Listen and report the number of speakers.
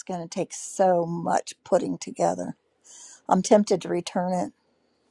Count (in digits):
1